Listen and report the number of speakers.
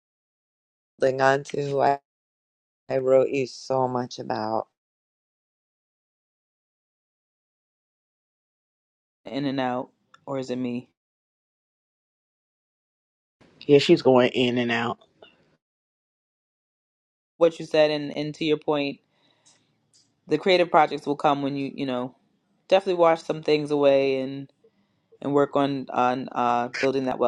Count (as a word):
three